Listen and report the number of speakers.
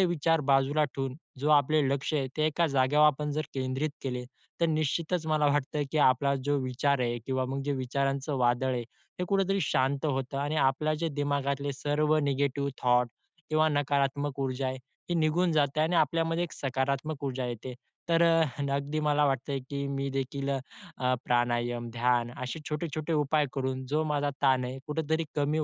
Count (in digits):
1